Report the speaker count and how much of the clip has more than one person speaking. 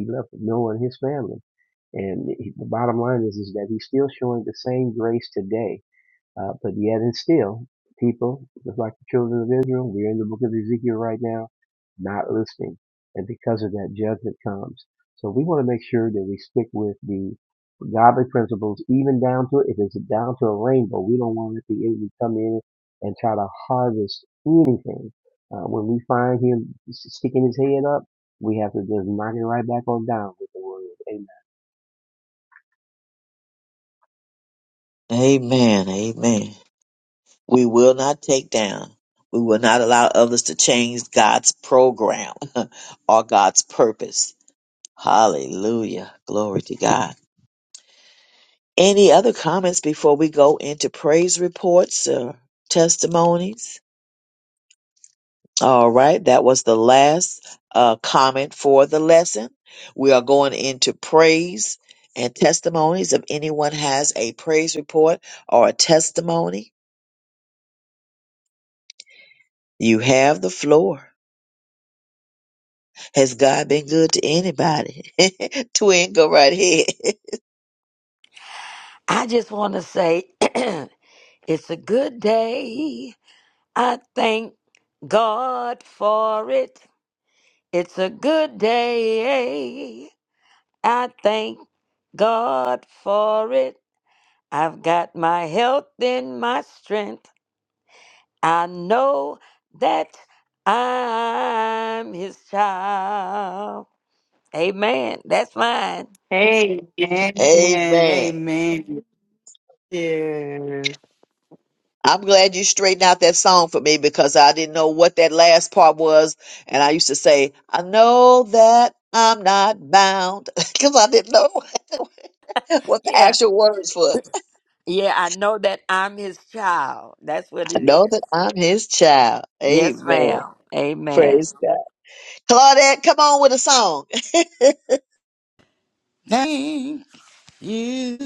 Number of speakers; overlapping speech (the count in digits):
5, about 2%